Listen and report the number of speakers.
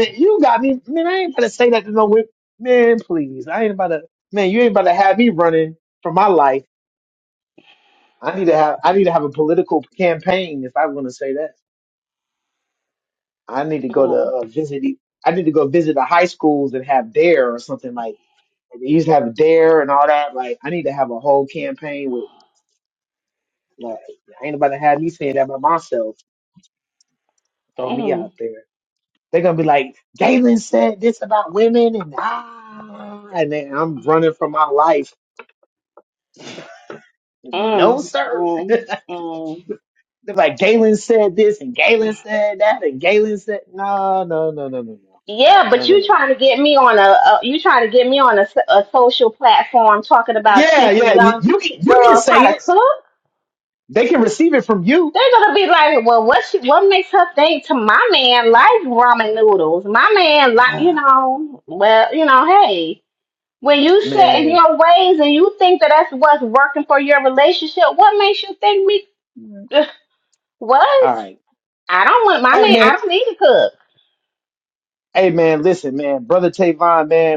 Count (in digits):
2